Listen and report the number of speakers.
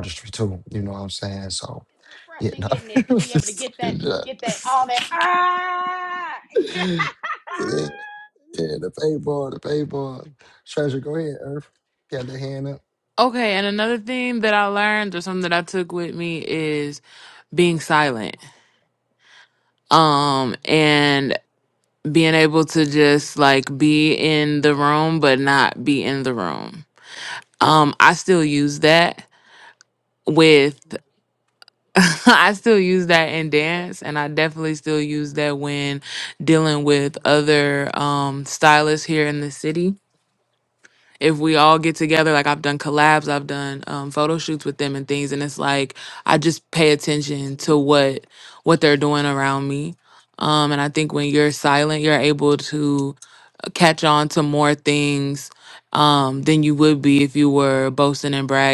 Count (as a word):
three